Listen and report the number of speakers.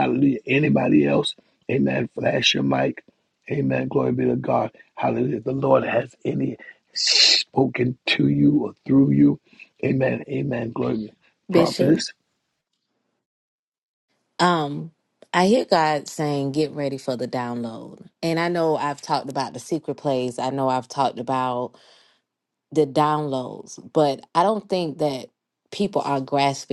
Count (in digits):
2